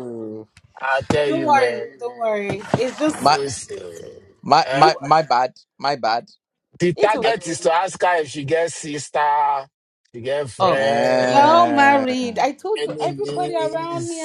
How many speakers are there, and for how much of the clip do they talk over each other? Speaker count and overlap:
3, about 30%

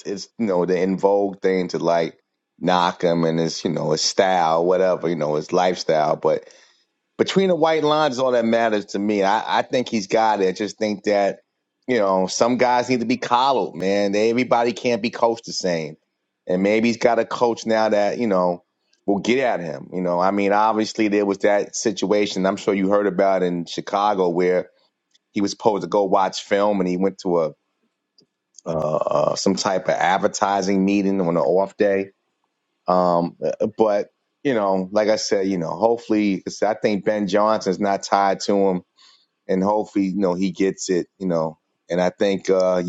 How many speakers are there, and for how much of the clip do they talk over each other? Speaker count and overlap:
1, no overlap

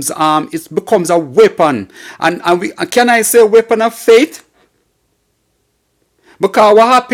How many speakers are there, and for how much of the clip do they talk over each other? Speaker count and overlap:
1, no overlap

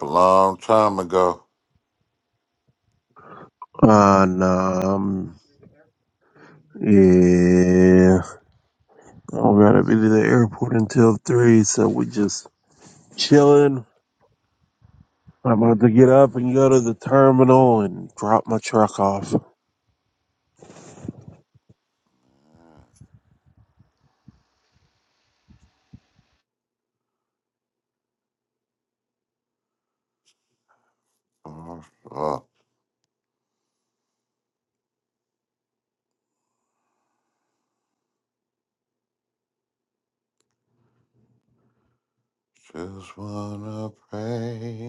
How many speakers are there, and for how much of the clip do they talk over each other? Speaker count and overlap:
2, no overlap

